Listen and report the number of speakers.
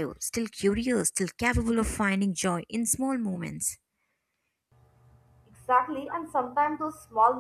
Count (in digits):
2